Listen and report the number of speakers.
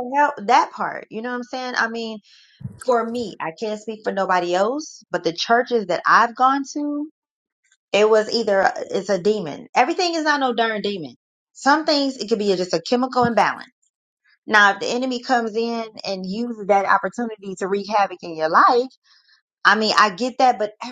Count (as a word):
one